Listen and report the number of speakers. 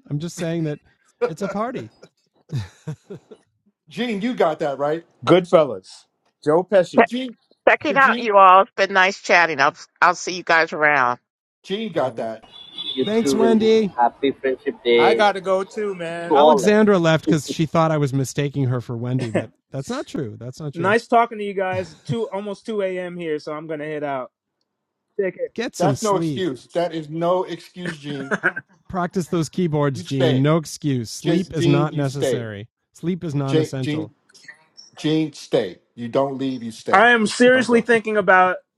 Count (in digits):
5